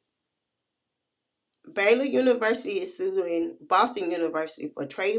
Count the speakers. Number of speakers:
1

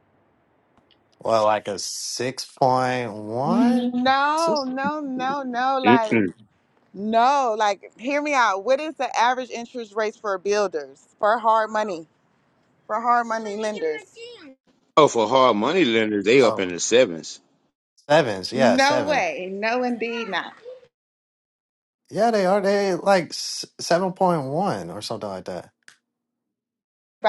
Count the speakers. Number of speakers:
3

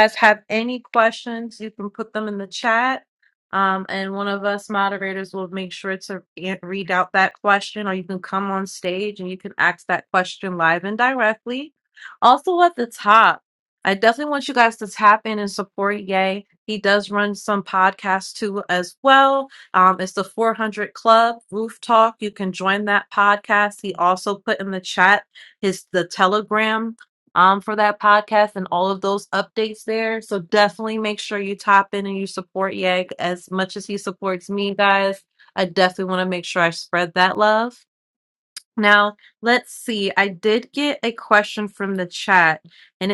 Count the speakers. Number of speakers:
1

